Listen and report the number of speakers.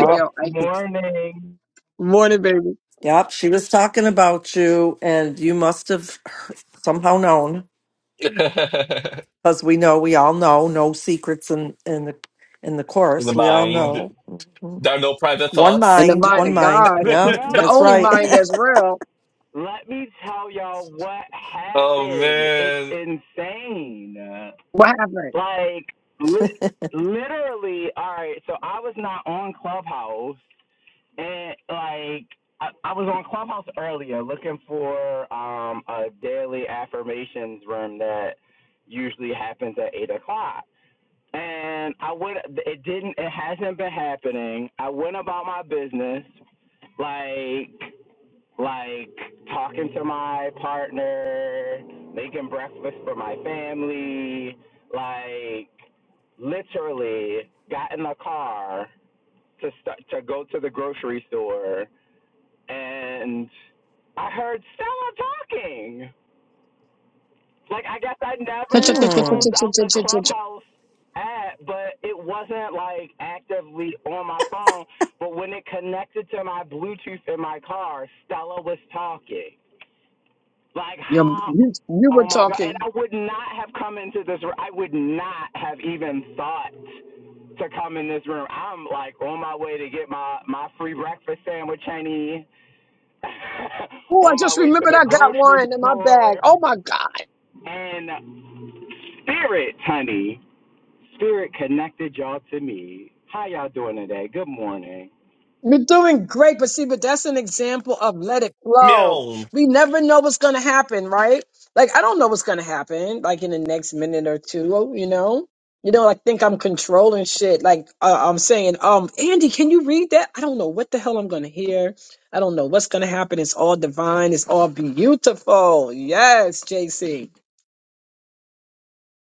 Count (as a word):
four